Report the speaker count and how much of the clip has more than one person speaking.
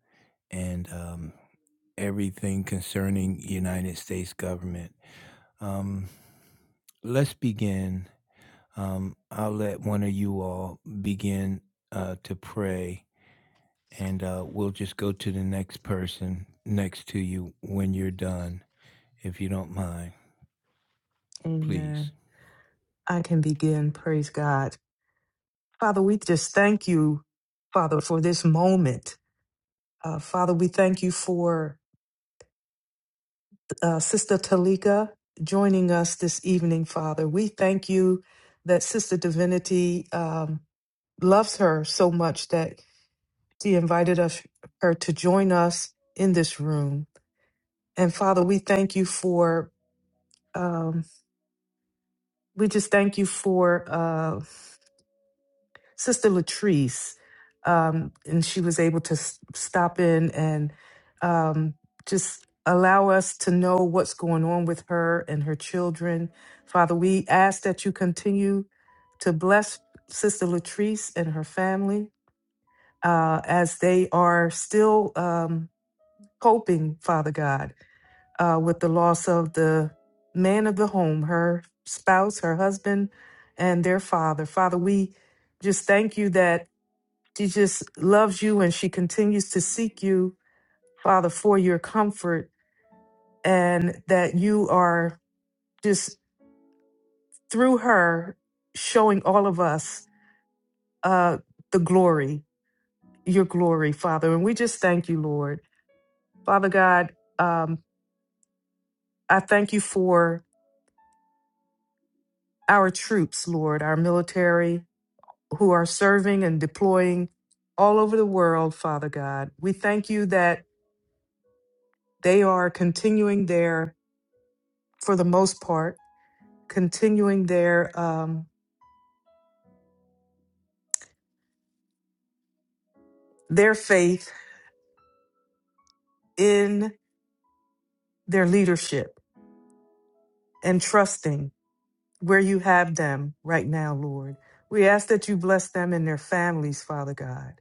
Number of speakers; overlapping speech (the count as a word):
two, under 1%